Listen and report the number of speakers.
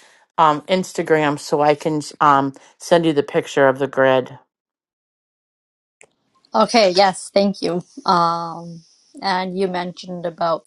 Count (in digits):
2